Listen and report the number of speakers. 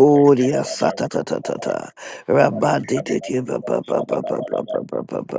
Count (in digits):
2